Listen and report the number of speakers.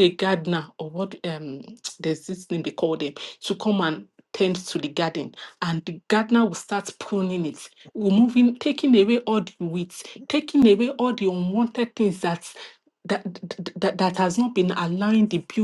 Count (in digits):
1